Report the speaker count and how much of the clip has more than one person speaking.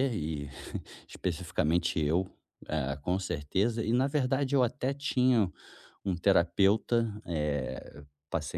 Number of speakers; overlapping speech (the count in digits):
1, no overlap